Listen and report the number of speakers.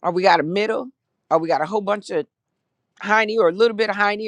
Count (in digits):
1